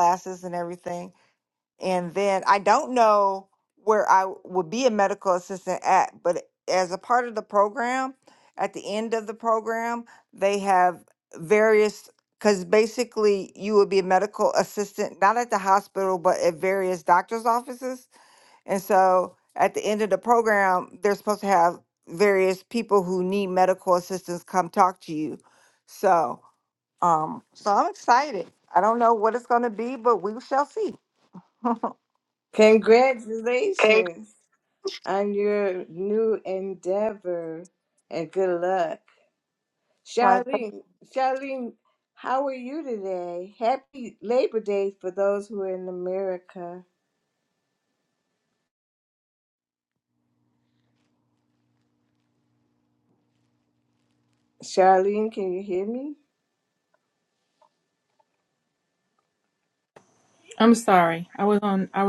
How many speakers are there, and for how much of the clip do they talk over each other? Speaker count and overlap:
three, under 1%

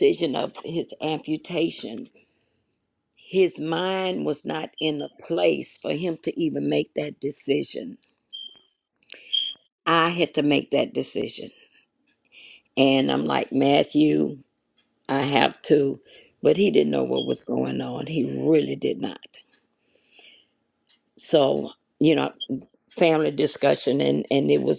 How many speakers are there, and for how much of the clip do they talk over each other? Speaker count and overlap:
one, no overlap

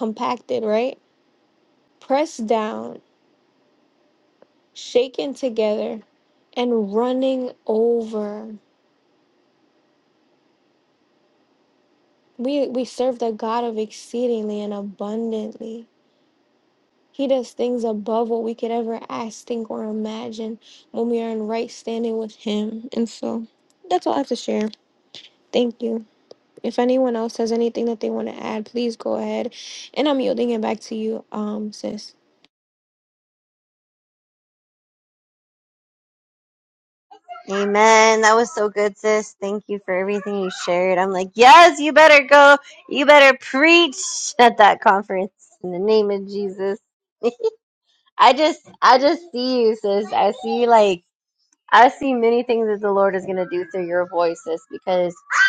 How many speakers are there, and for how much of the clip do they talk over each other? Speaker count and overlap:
two, no overlap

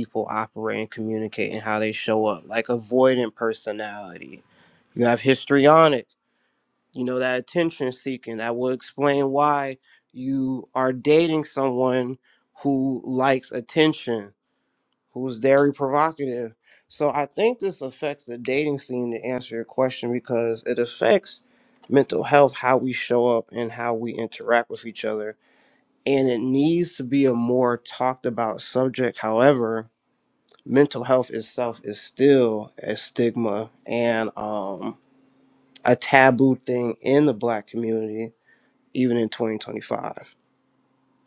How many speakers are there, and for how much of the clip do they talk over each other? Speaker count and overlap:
one, no overlap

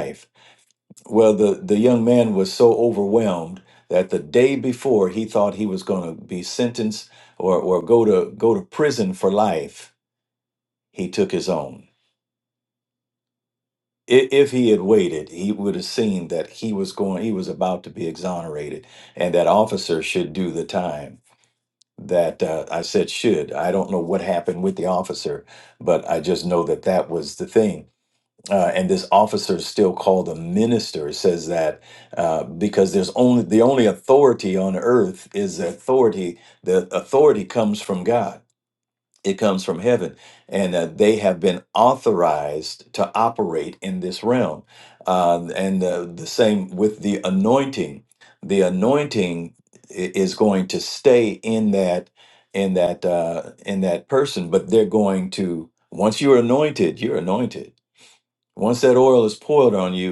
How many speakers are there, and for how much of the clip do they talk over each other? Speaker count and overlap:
one, no overlap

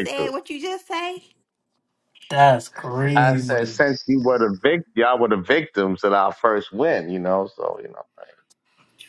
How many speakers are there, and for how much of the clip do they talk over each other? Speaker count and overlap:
three, about 10%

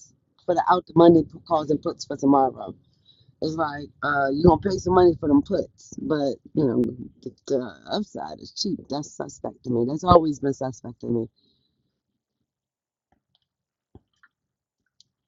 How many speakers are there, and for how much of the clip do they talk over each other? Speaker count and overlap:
one, no overlap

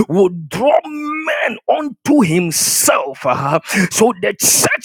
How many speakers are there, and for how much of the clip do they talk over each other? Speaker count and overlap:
one, no overlap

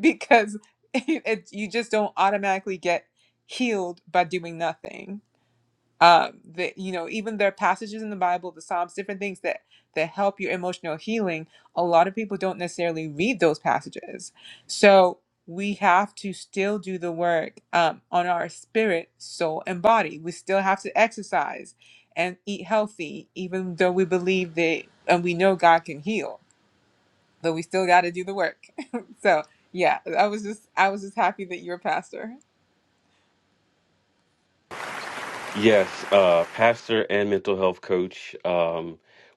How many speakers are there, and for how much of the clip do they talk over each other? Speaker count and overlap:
two, no overlap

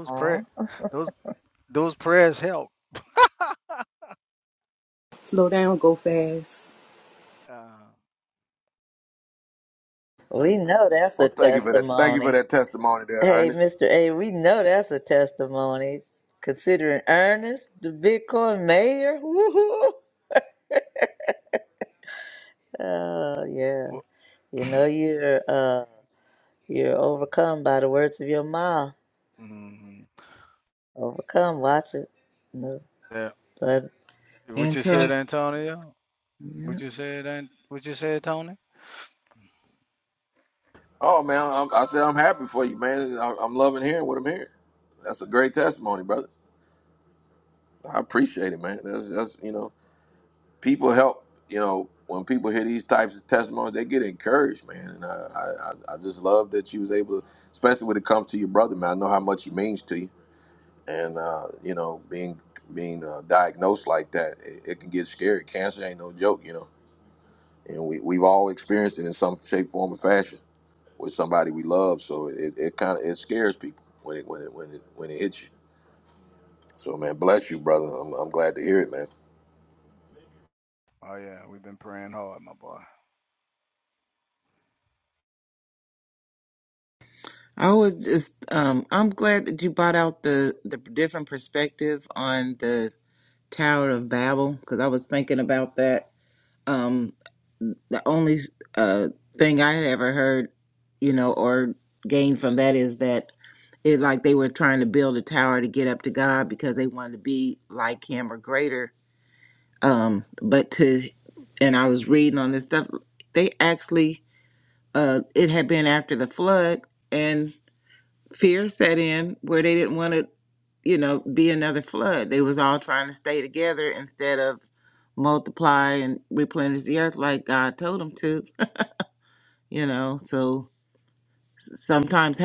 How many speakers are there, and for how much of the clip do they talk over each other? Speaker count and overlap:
five, about 2%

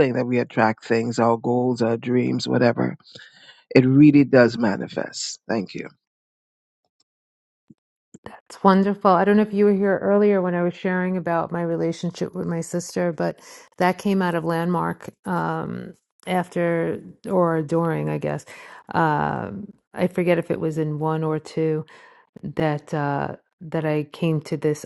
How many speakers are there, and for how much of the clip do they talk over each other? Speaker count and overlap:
two, no overlap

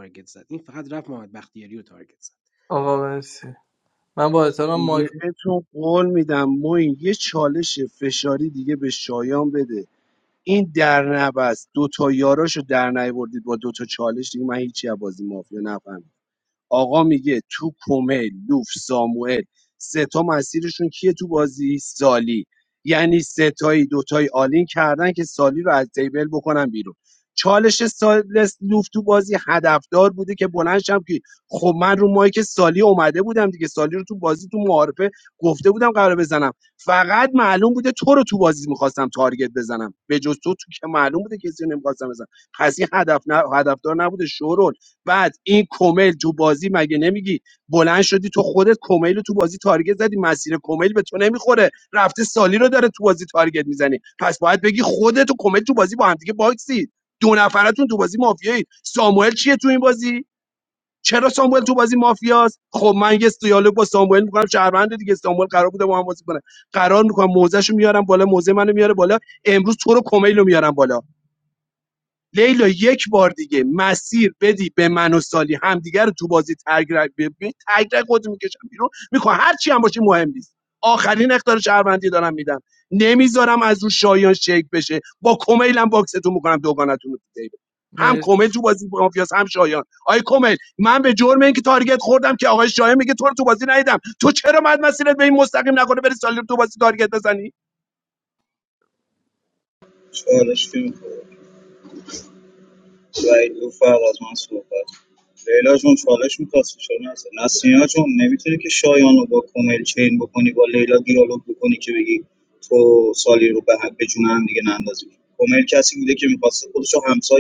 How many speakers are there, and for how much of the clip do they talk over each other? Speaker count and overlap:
four, about 1%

